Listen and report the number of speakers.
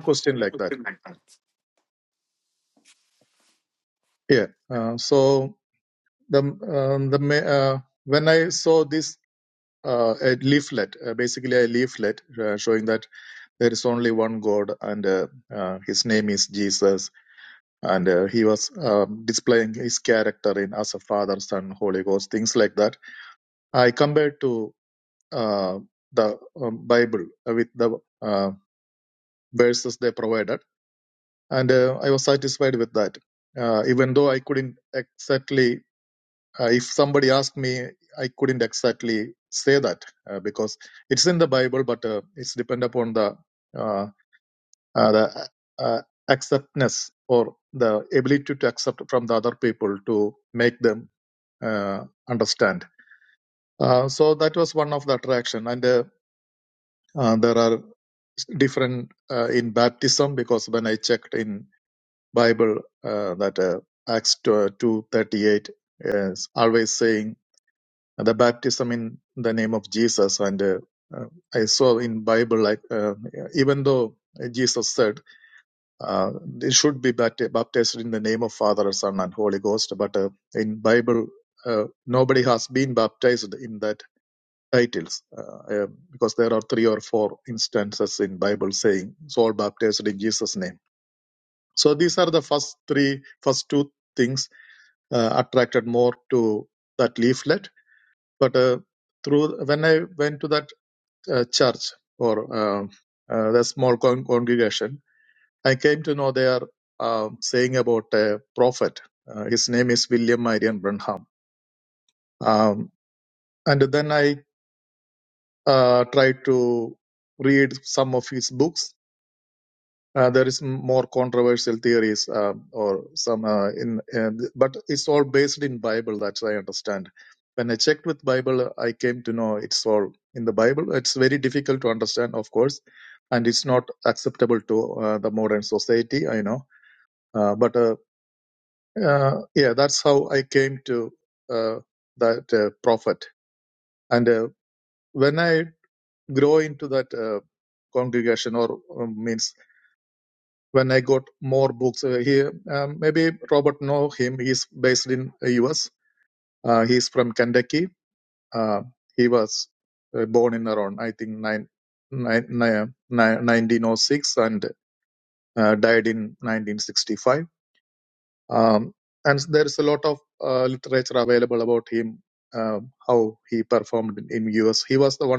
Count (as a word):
one